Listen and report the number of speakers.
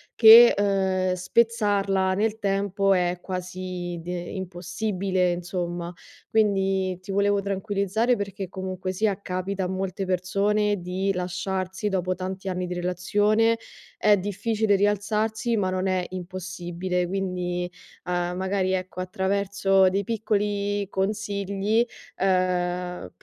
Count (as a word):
one